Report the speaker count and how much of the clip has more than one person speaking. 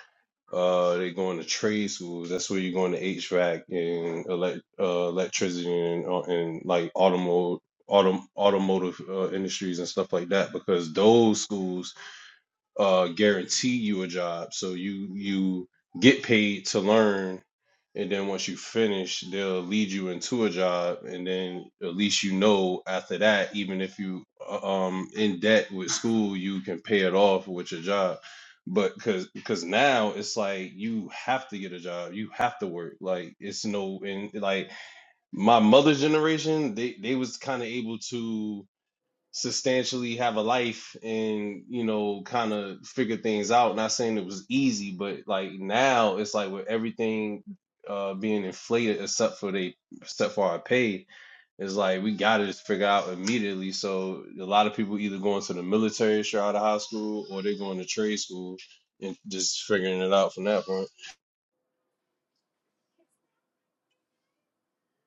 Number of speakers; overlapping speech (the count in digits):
1, no overlap